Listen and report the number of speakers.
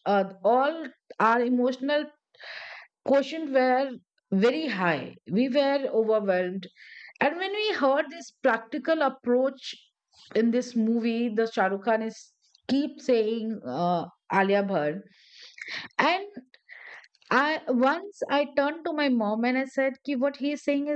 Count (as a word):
one